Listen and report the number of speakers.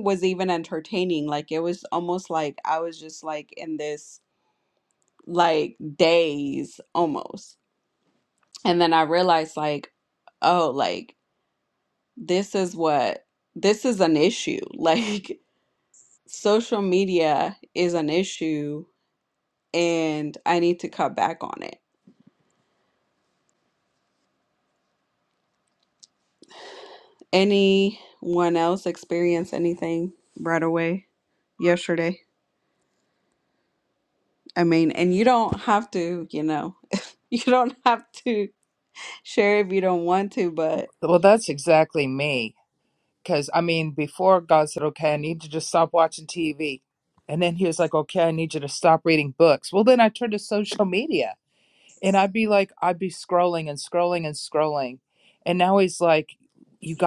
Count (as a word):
two